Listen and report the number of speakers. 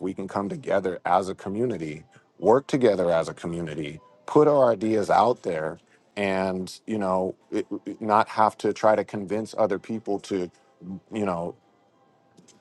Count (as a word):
one